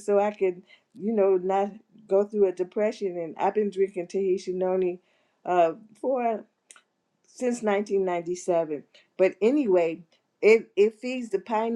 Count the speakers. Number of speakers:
one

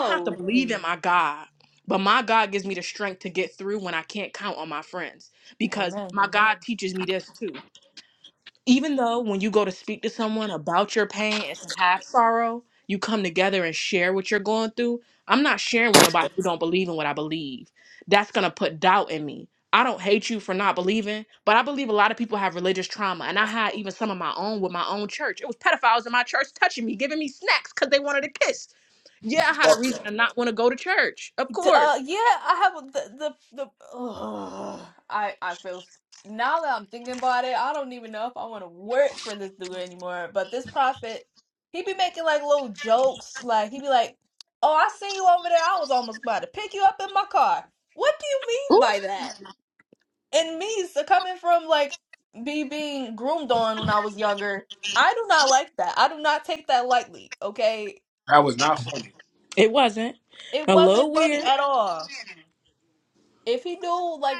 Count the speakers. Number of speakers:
three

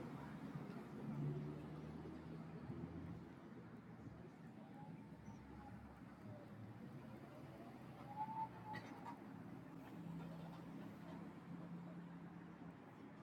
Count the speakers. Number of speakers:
zero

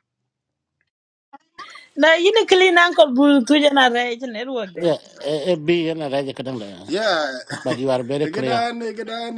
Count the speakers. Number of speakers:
three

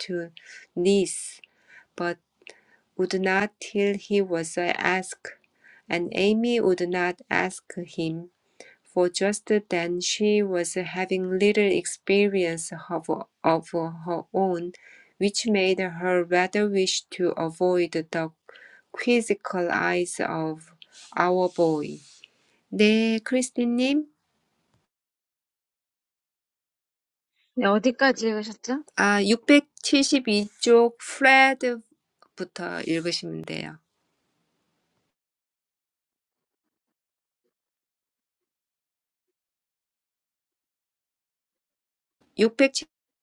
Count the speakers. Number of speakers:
two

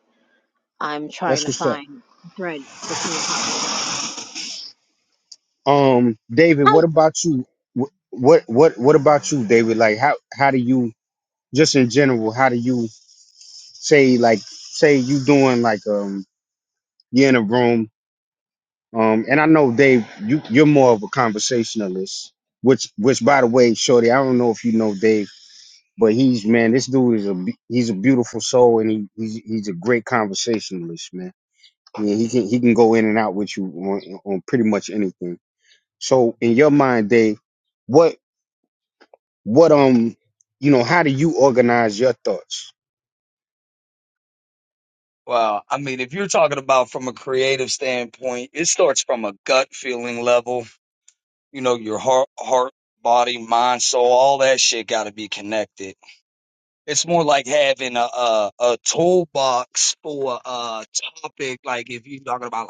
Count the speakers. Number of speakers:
three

